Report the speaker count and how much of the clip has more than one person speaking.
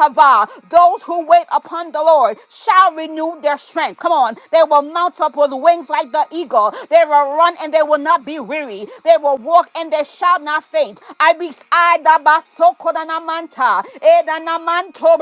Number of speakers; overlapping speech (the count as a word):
one, no overlap